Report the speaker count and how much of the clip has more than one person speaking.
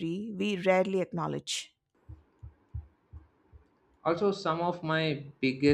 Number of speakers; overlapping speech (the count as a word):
two, no overlap